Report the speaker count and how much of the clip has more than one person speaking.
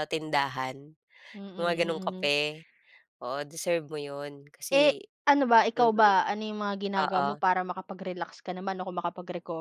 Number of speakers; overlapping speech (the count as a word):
two, about 18%